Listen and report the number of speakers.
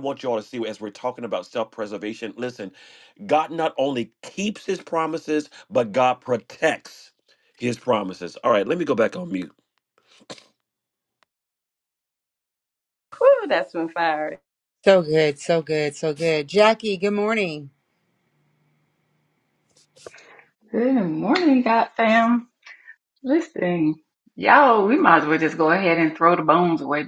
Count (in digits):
4